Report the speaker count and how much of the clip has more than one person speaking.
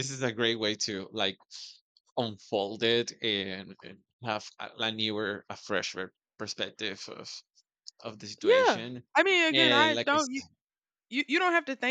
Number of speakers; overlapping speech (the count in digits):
2, about 9%